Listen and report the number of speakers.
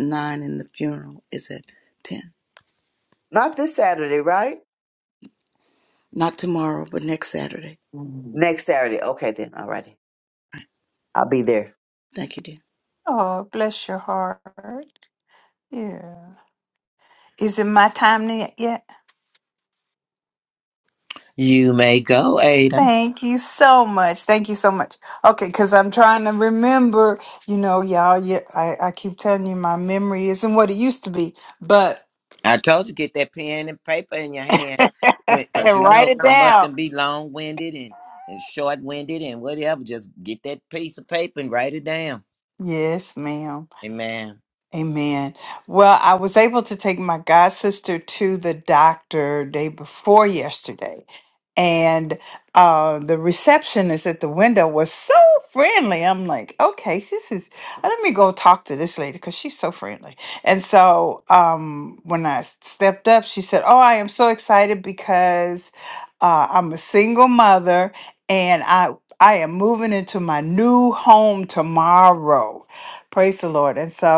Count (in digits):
4